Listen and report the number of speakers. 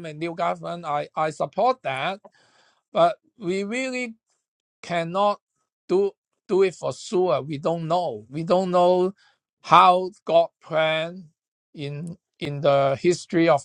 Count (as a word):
one